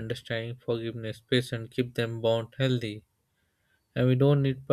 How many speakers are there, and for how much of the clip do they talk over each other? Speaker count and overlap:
1, no overlap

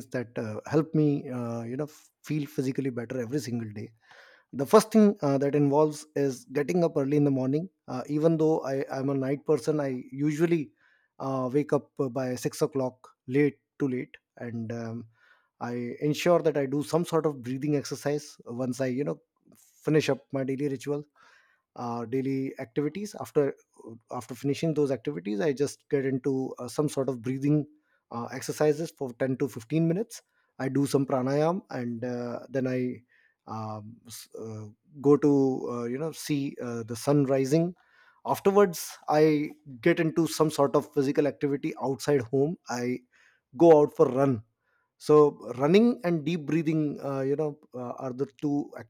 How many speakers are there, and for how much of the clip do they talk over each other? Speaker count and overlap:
1, no overlap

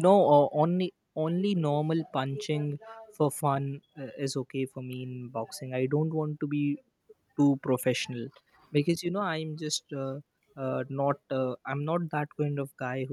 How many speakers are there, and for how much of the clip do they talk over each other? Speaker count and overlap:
1, no overlap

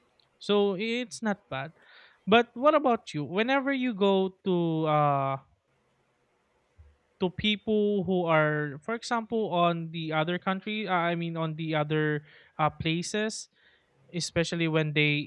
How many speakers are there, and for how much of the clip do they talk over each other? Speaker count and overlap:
1, no overlap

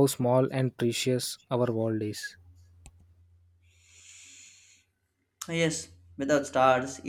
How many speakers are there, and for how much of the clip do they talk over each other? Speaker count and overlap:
2, no overlap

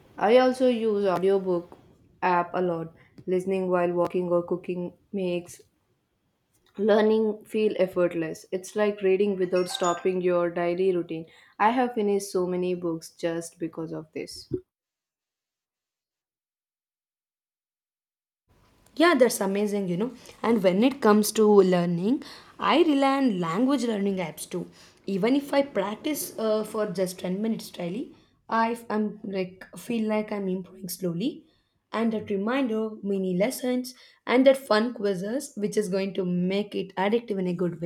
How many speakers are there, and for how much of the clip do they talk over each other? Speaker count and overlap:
2, no overlap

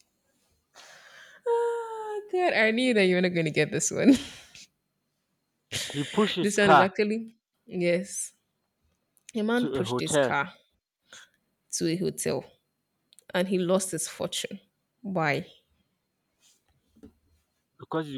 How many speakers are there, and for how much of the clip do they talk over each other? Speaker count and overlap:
2, about 7%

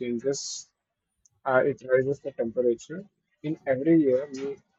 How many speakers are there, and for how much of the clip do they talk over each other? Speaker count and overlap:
1, no overlap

